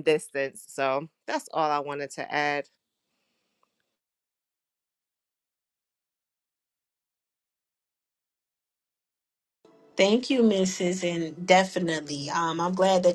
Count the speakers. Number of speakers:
2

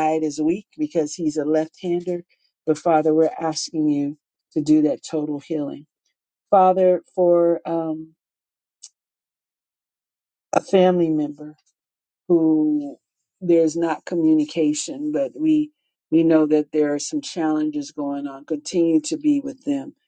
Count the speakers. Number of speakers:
1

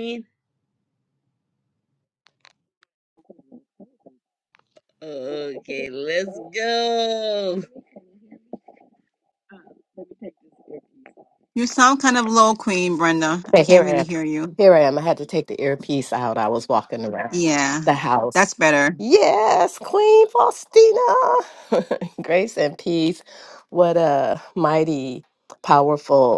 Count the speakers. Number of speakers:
3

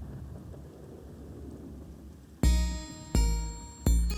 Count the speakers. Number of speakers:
0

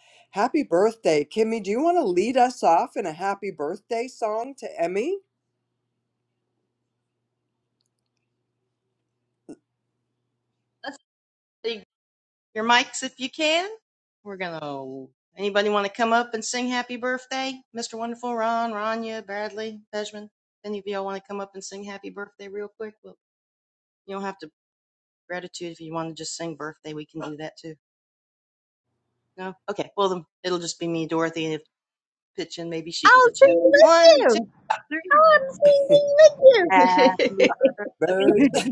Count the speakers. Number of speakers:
3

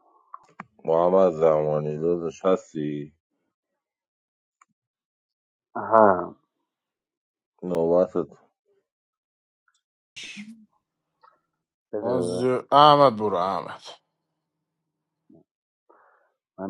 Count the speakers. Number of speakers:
3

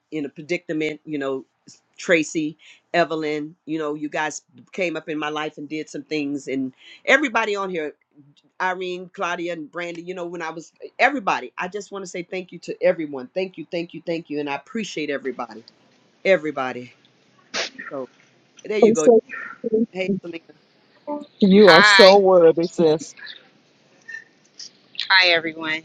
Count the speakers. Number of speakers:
3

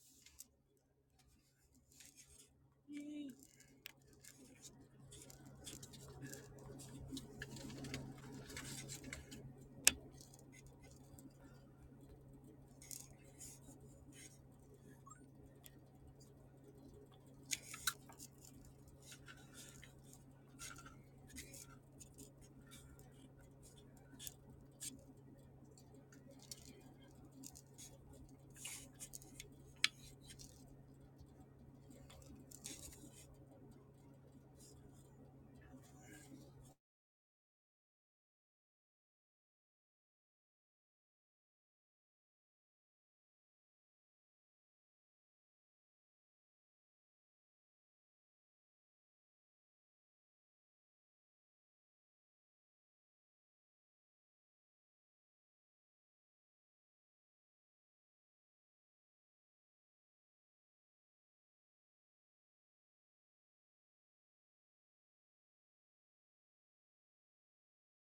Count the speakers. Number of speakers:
0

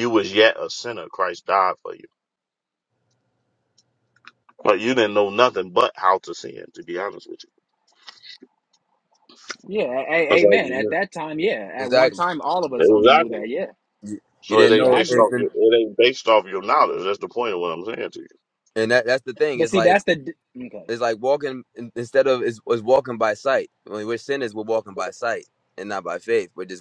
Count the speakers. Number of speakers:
3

